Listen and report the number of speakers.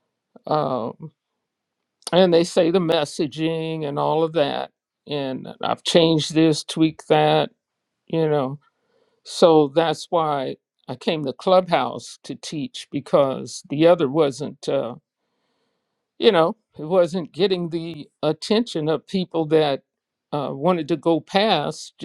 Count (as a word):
one